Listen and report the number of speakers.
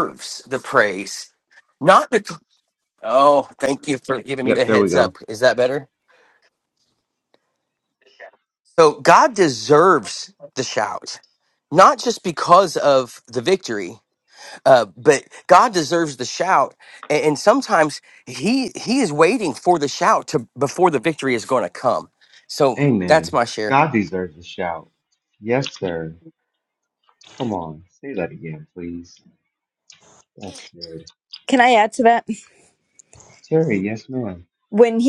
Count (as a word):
three